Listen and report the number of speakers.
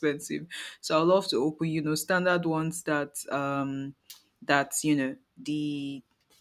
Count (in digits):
1